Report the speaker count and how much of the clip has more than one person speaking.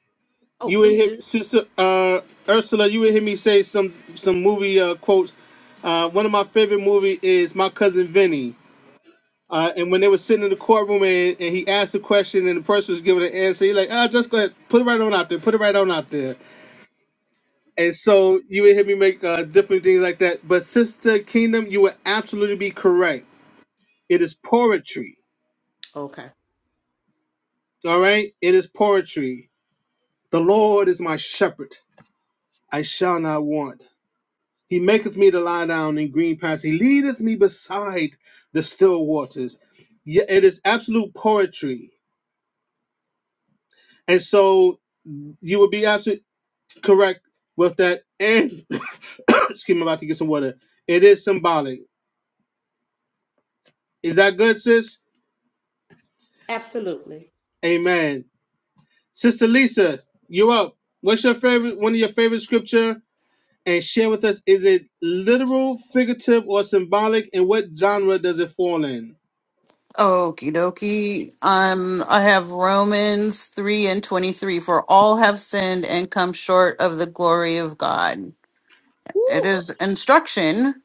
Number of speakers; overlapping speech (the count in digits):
3, about 1%